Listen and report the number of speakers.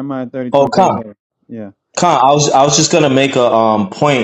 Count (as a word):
two